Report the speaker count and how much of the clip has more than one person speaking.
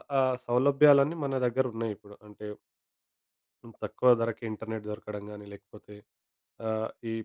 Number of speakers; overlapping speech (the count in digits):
1, no overlap